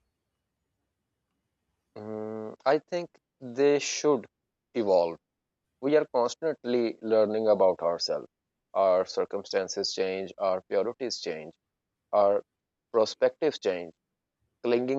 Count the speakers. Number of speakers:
one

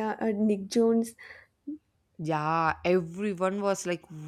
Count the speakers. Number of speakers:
two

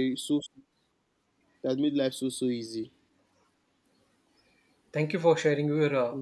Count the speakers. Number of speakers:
two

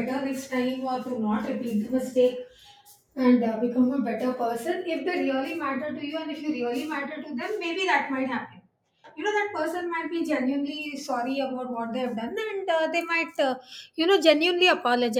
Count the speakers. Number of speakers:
one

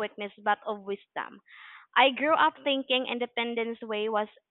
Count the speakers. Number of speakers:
one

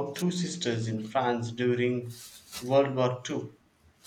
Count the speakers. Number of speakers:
one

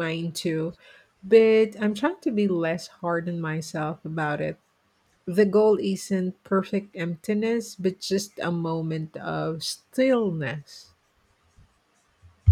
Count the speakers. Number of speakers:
one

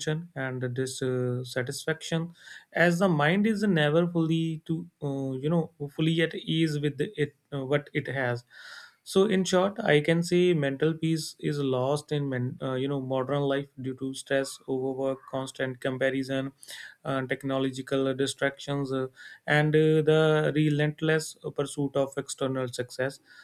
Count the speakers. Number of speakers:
one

